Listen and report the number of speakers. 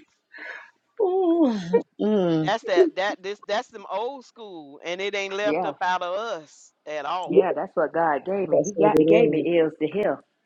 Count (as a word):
three